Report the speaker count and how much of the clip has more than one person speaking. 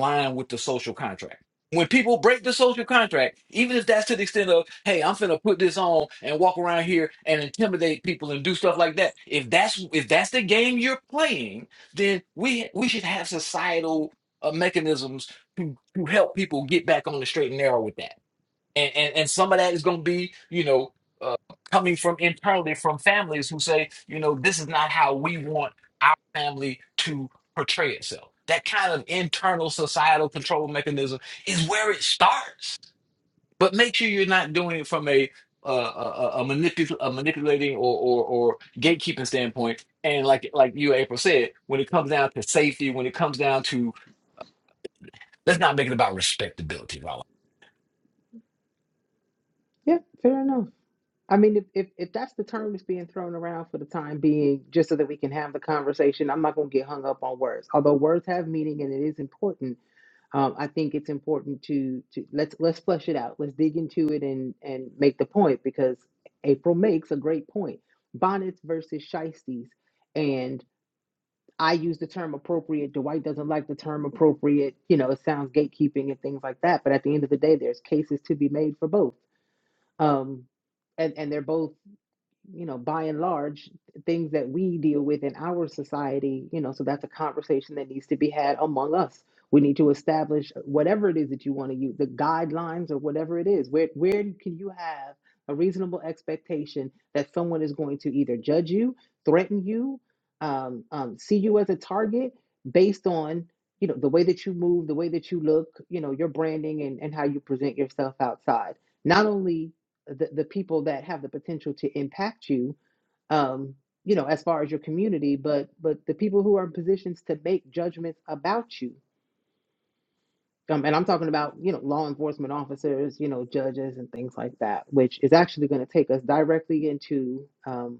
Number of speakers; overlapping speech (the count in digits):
2, no overlap